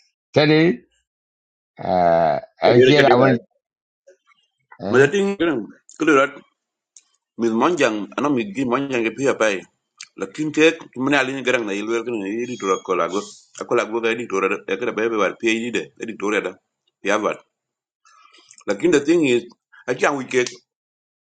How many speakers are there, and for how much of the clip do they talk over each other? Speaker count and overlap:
2, about 4%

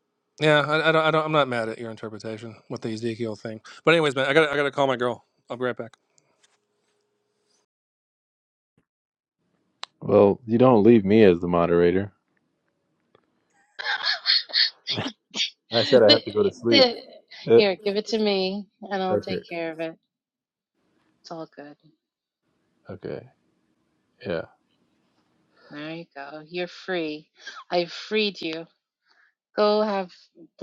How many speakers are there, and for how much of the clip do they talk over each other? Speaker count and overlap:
3, about 3%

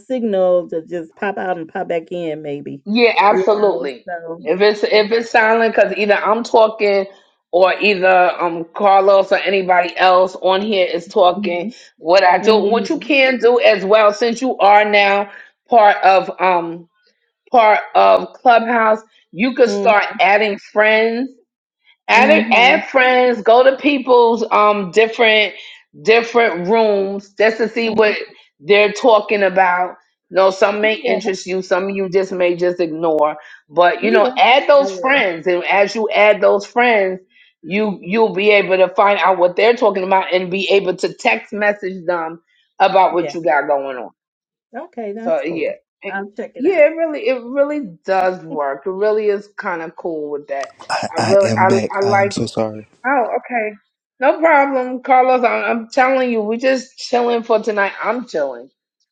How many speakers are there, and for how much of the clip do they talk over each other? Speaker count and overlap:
3, about 11%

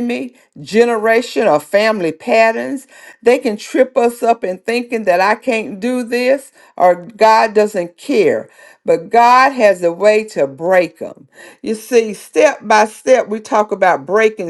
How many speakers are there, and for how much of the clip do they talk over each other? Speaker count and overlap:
1, no overlap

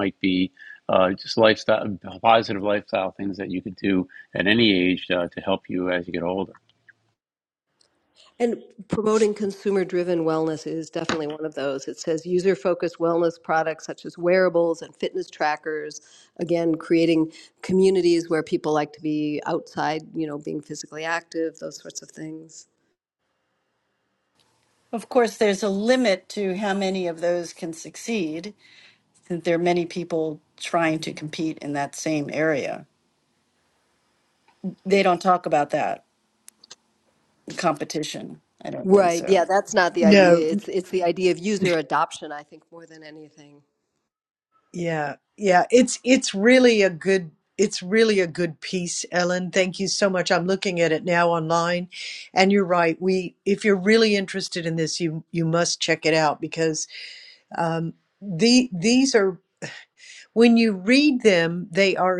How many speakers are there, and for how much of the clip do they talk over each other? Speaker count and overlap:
4, about 2%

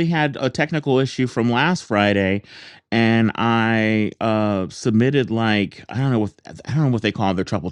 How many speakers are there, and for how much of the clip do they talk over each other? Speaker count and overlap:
1, no overlap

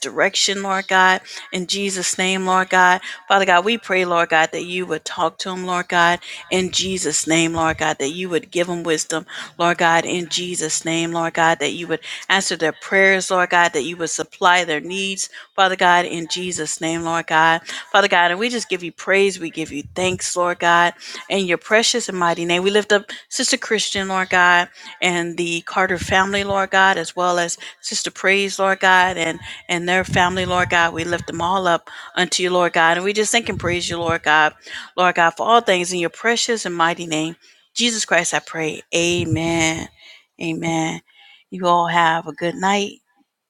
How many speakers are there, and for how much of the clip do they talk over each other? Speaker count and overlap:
1, no overlap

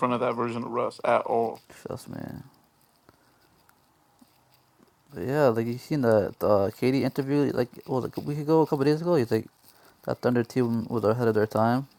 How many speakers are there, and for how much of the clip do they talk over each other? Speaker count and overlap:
2, no overlap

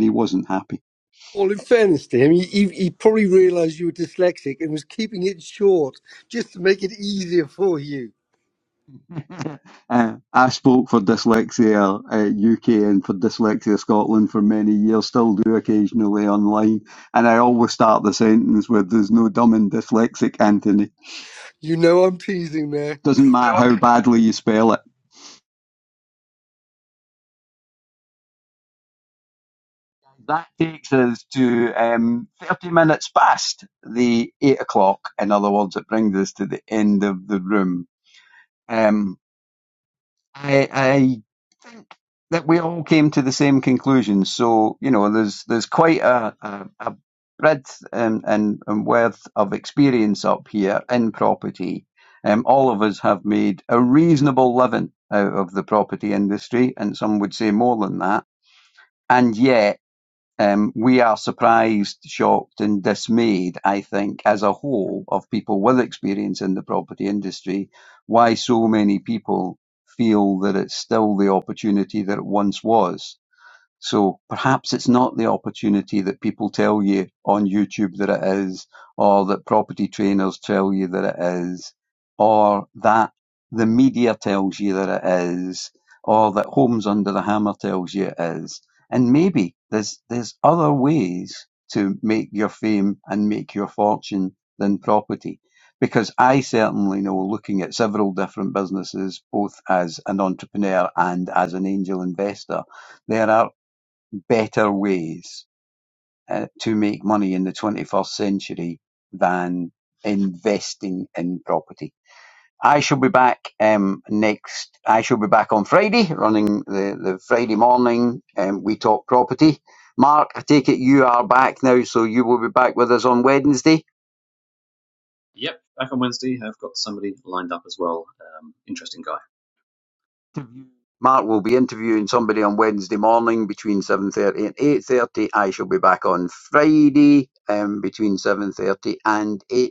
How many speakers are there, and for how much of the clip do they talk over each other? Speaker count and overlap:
3, no overlap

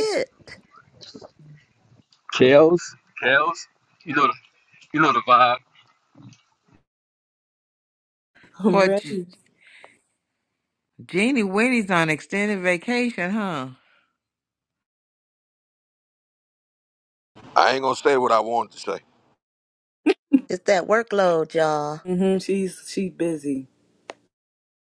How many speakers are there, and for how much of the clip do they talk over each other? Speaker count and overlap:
5, about 2%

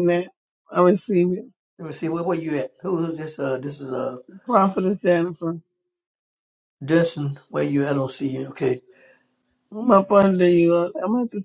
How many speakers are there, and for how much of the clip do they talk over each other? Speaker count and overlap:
2, no overlap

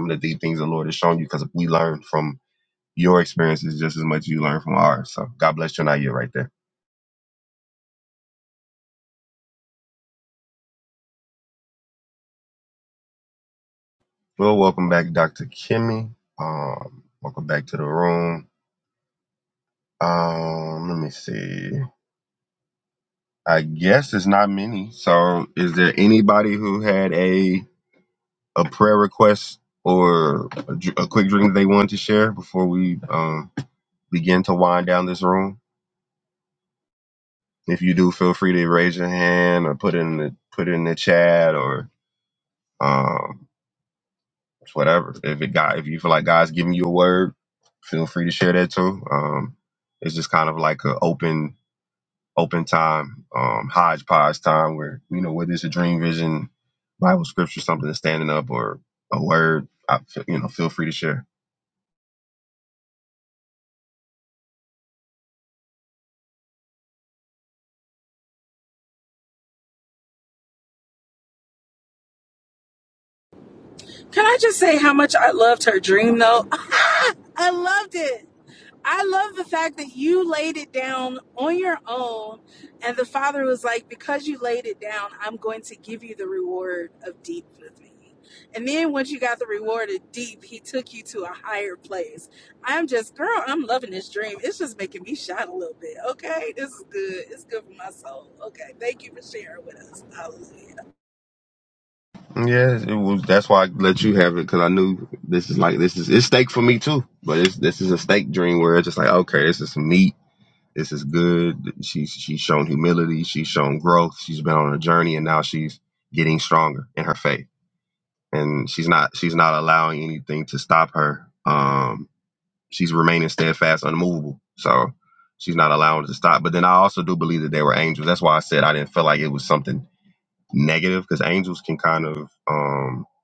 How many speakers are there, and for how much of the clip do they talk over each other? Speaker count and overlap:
2, no overlap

